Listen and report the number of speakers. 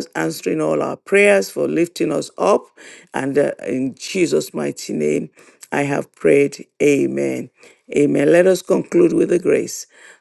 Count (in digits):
1